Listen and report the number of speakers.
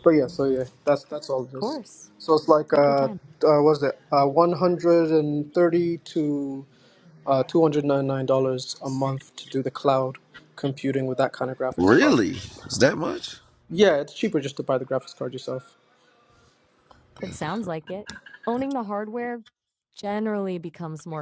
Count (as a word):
three